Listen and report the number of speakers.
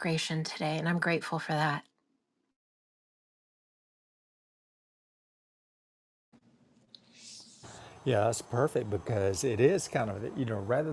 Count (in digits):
2